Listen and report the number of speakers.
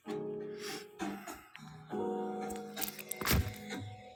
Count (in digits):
0